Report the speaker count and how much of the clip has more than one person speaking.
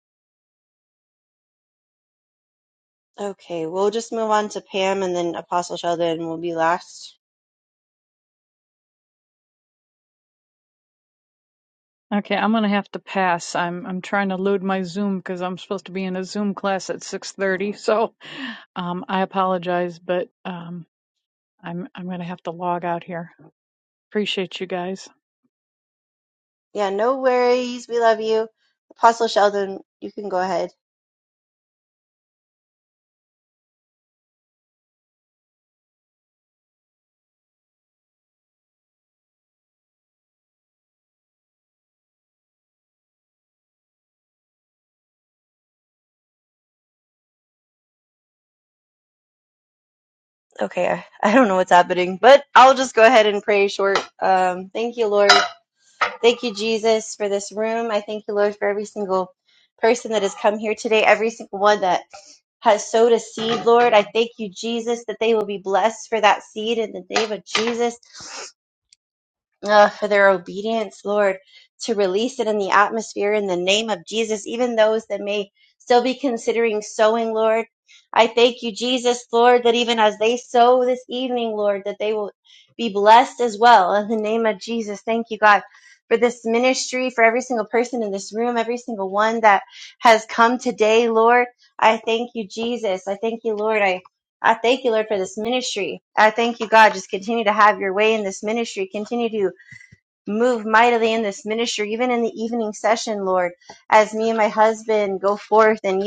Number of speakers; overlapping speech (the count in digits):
2, no overlap